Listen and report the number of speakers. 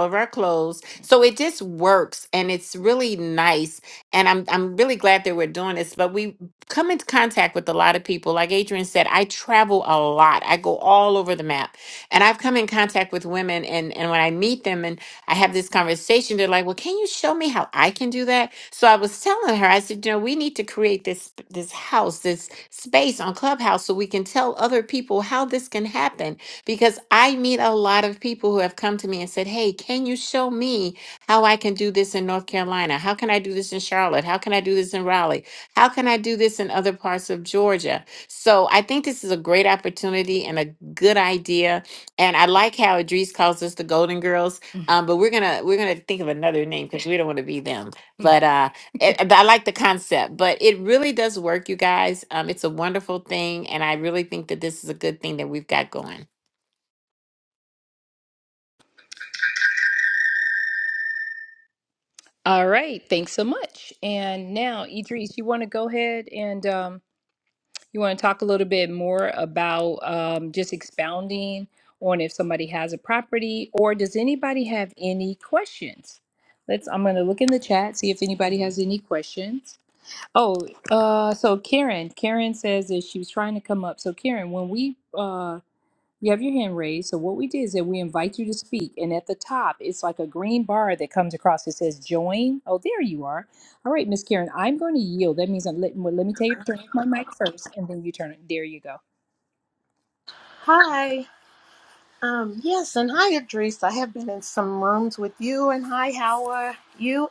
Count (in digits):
3